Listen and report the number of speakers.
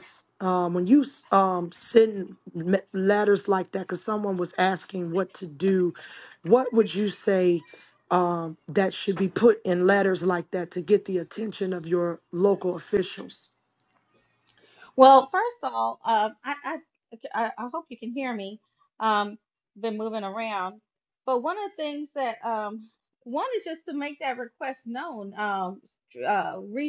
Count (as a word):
two